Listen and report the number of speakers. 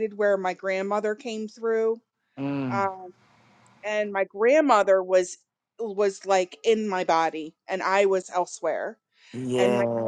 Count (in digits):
2